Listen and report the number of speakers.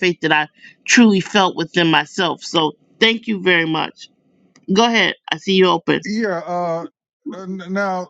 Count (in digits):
2